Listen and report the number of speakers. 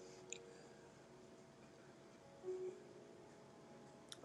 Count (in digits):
0